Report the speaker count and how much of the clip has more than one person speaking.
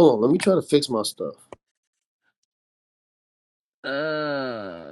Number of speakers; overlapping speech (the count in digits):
2, no overlap